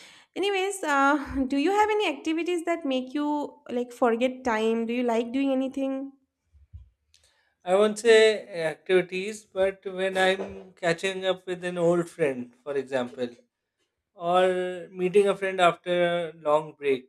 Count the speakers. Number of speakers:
two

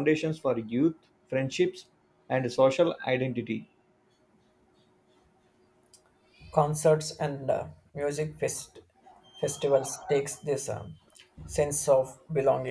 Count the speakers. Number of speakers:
two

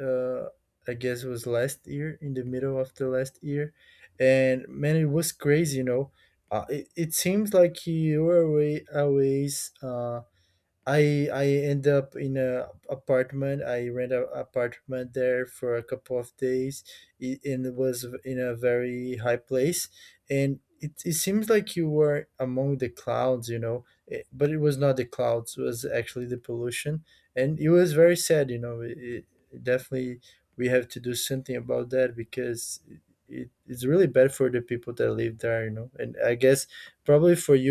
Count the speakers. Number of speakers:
one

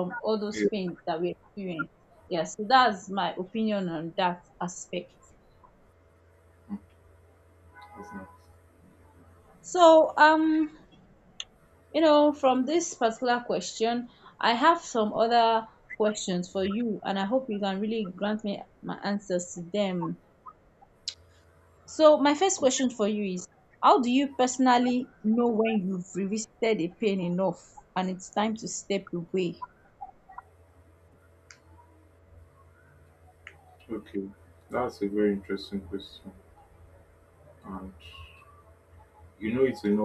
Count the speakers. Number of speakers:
two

